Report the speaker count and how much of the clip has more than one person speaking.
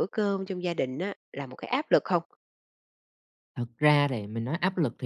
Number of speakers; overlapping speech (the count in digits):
2, no overlap